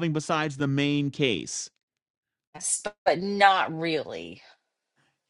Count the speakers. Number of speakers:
two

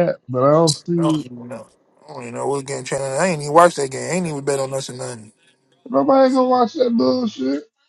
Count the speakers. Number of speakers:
two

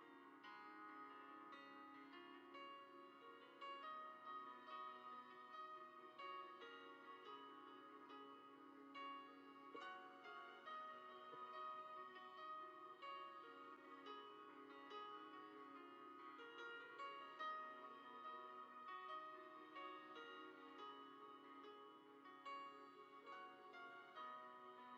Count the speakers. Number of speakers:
zero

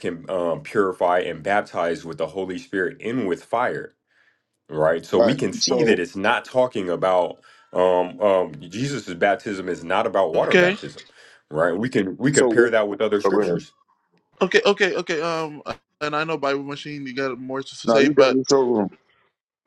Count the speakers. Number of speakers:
three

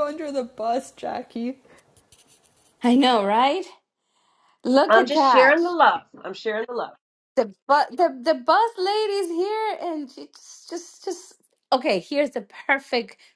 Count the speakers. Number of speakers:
three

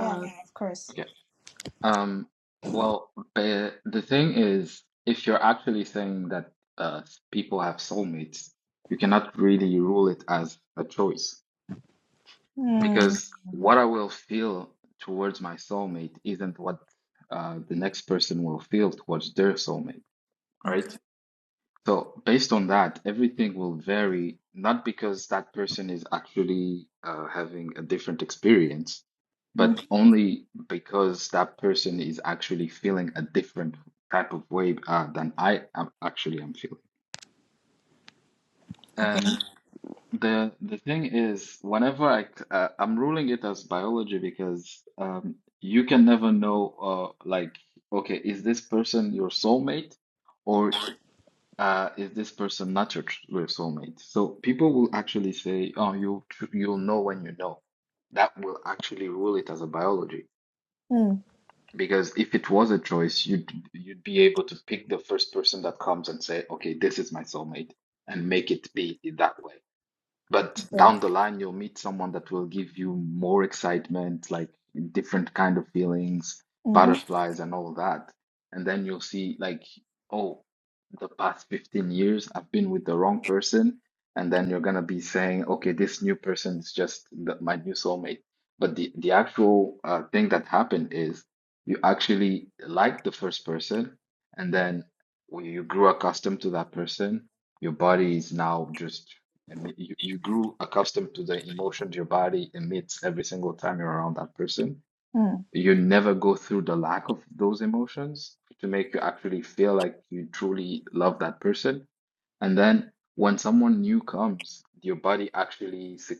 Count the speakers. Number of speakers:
two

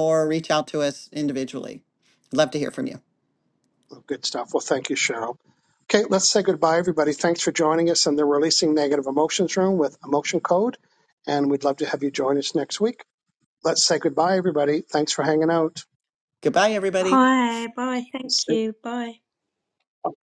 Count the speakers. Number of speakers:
three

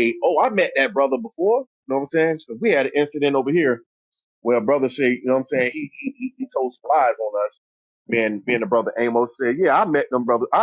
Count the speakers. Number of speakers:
one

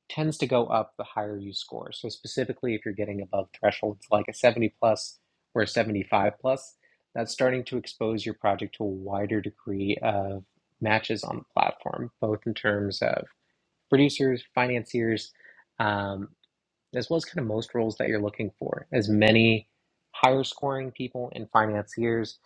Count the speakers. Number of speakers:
one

